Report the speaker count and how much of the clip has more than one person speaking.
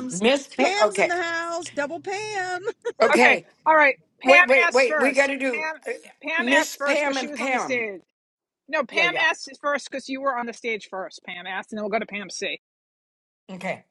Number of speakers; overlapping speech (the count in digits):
3, about 29%